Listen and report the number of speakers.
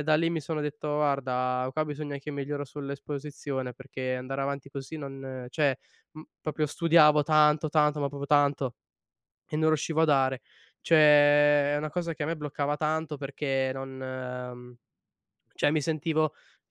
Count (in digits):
1